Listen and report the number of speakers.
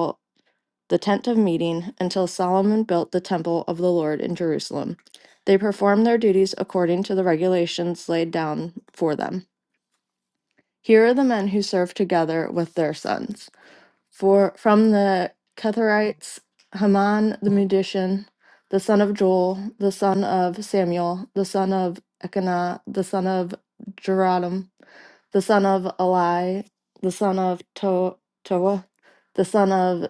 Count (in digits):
1